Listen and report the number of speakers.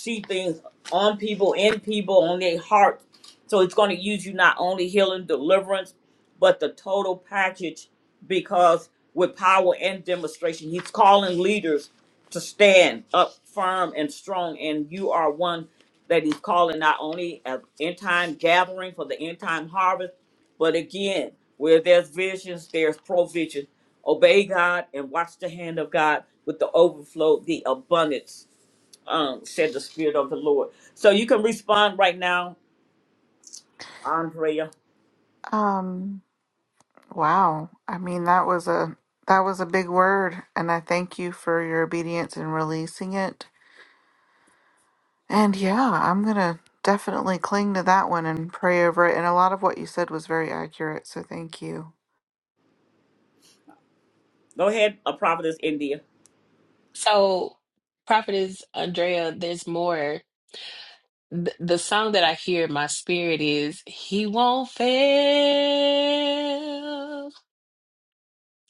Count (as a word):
three